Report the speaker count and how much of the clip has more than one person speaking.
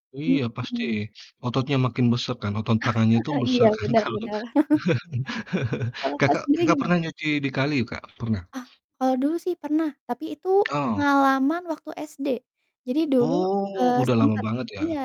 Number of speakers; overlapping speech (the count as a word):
two, about 22%